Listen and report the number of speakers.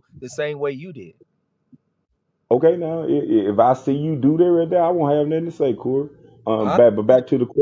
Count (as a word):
two